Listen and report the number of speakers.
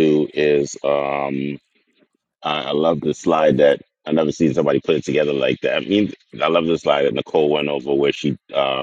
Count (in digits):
1